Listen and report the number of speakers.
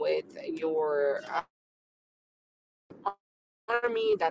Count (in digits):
1